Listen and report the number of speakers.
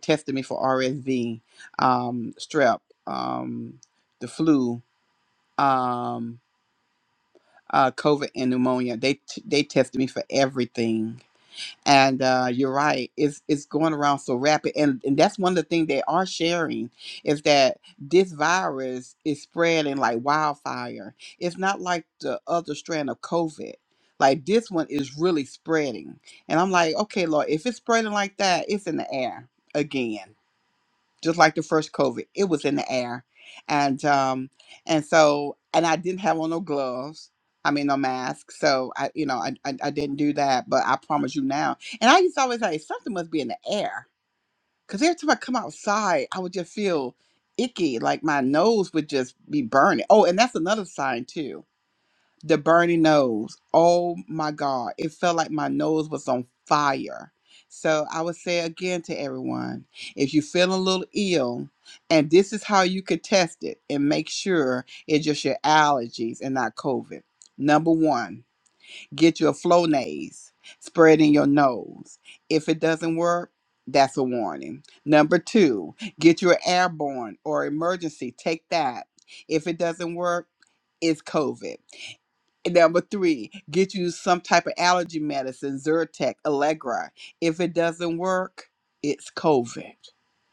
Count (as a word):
one